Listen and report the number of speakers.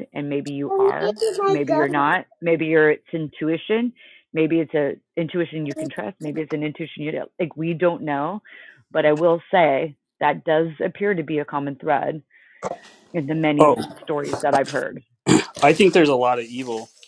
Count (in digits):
2